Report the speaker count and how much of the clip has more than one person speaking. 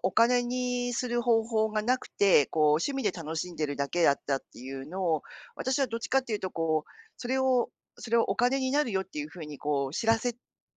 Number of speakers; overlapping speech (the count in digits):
1, no overlap